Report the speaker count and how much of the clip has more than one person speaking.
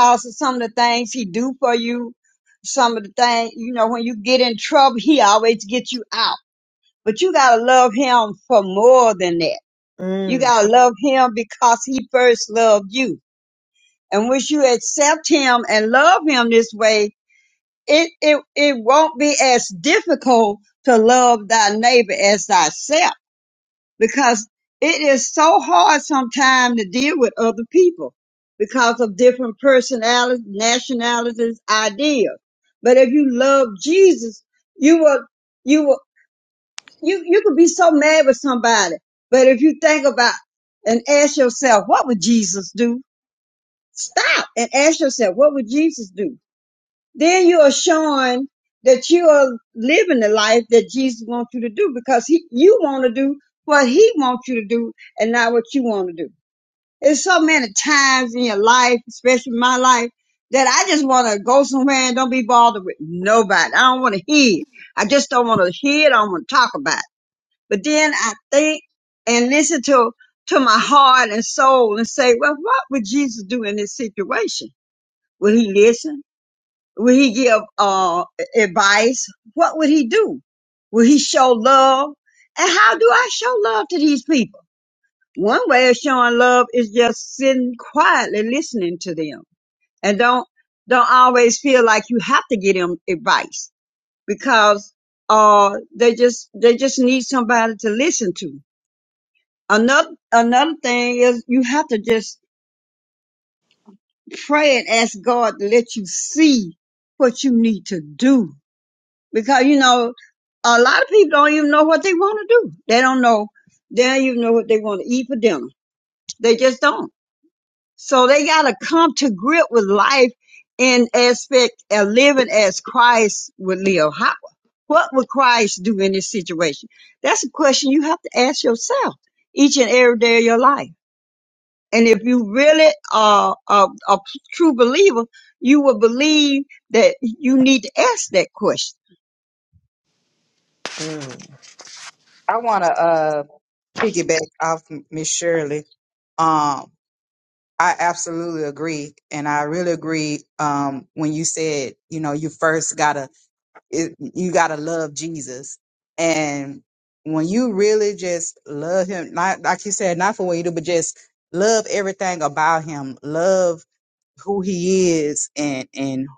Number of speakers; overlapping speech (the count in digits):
3, under 1%